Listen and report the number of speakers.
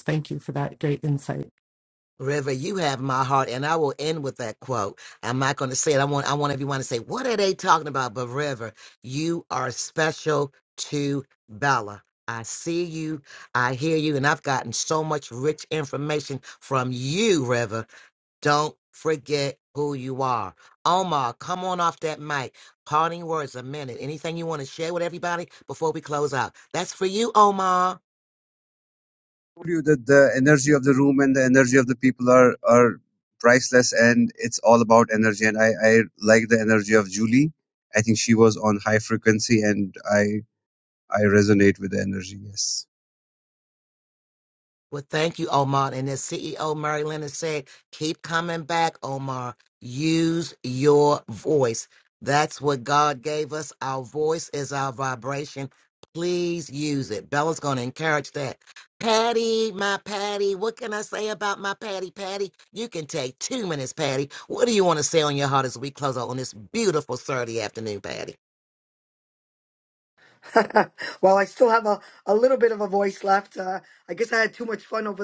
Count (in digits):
4